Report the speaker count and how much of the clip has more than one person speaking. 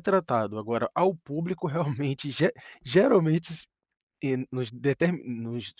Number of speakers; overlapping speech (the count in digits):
1, no overlap